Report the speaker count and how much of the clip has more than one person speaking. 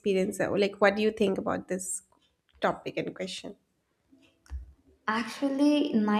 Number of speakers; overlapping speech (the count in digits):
2, no overlap